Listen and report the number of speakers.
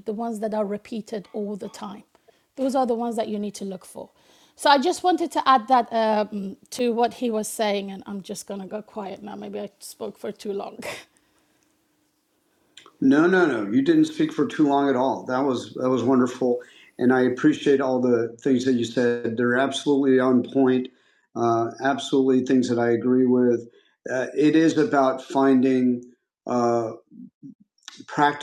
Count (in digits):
2